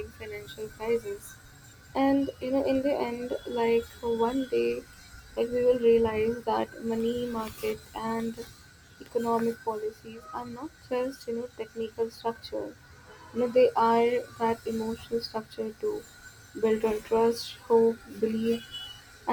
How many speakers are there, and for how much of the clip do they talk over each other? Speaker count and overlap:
one, no overlap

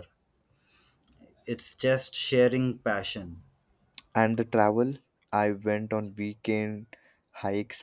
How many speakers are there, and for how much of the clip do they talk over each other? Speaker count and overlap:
two, no overlap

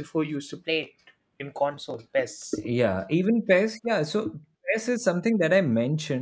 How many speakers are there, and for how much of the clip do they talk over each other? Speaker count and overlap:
two, no overlap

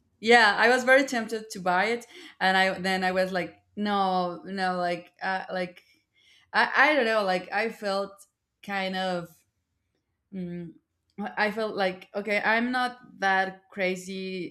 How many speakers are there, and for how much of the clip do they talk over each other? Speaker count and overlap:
one, no overlap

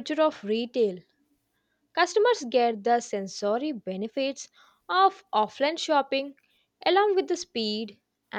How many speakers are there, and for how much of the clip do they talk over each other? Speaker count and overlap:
one, no overlap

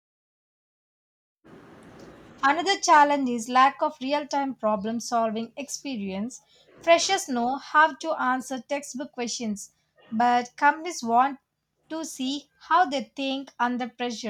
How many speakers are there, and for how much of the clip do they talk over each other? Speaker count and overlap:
one, no overlap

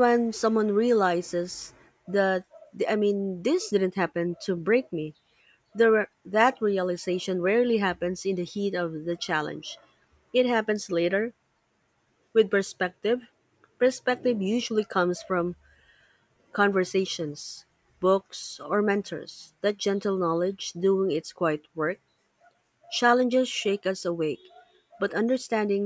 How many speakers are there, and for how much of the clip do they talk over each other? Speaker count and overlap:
one, no overlap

